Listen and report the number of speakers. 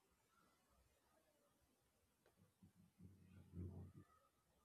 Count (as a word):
zero